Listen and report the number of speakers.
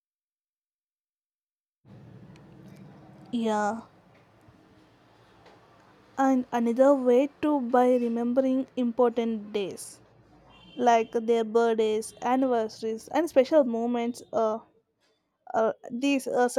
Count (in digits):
1